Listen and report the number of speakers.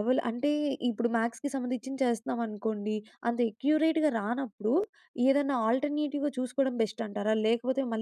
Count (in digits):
1